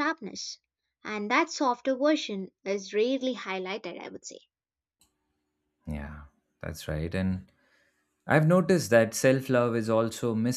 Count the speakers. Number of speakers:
2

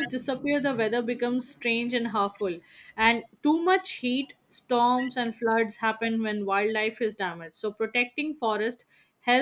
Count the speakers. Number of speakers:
1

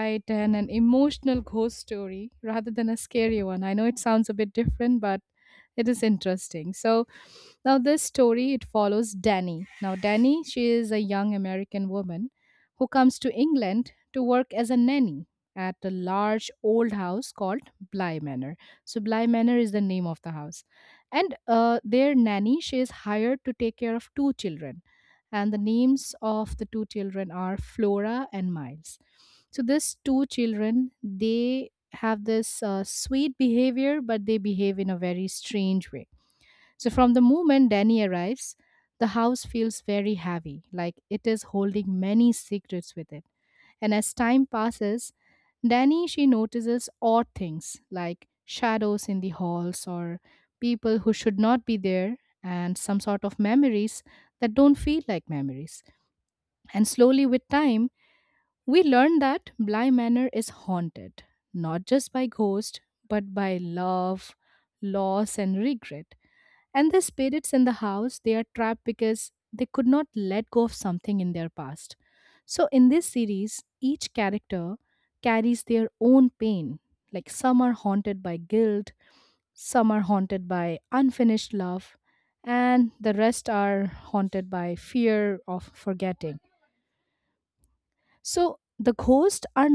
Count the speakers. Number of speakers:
1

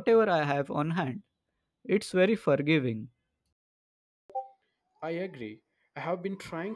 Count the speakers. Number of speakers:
2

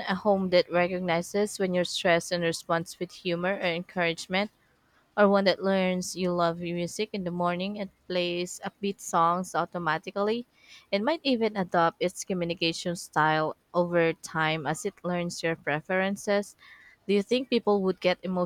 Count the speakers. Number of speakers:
1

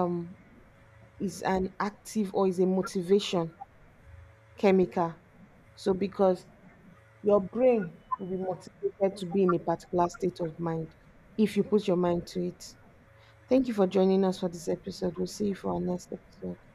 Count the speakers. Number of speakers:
1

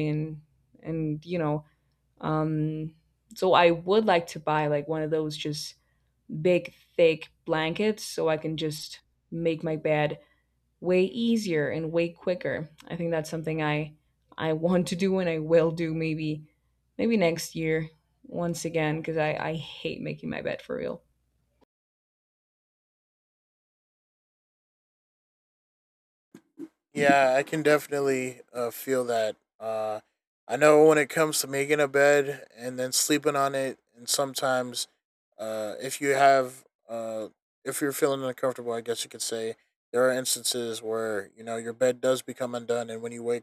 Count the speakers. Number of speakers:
2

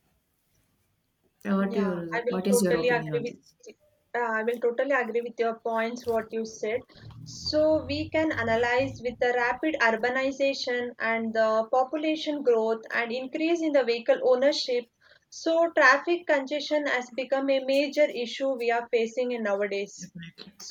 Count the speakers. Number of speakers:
2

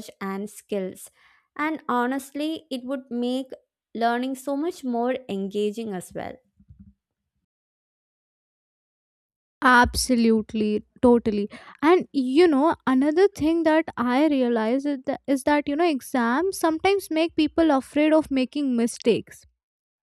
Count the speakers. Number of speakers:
2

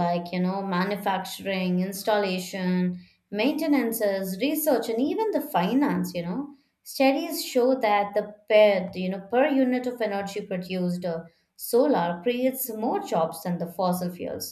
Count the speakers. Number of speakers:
1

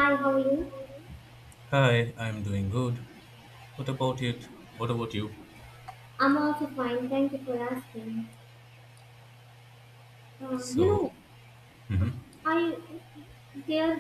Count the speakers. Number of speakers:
2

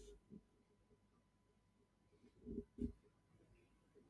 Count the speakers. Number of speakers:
0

